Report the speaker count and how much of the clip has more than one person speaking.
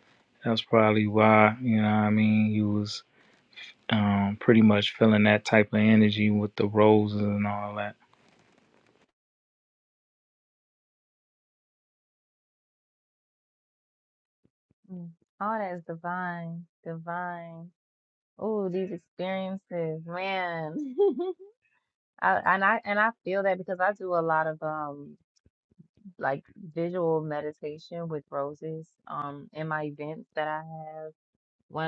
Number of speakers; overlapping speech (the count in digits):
2, no overlap